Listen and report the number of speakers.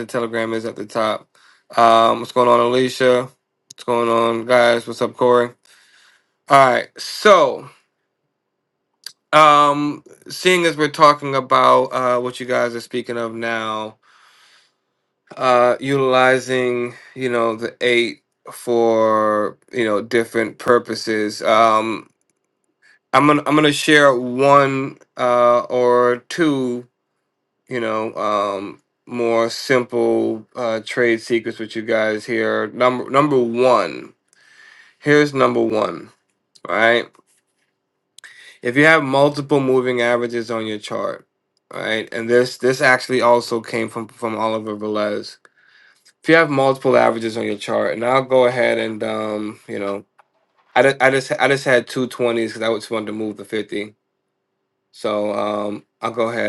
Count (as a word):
one